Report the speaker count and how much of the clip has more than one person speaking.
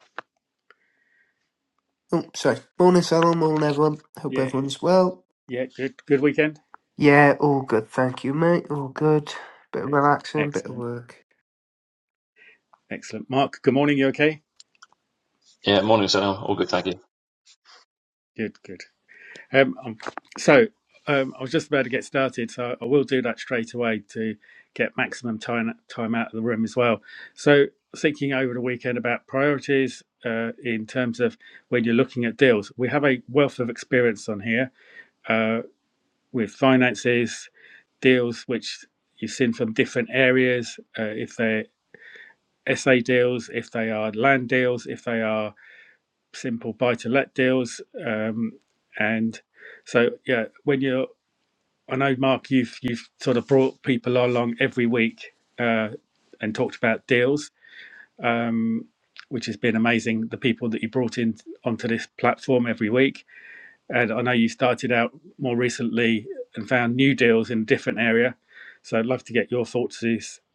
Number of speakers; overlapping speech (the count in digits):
3, about 1%